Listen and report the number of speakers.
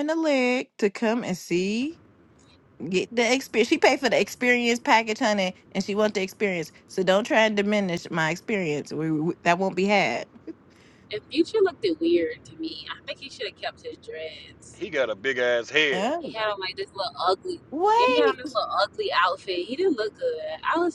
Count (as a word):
three